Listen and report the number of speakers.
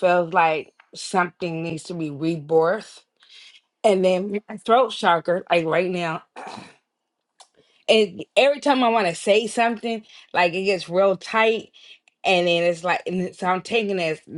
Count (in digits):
1